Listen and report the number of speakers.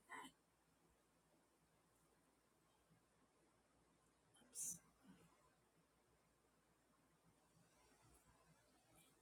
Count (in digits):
0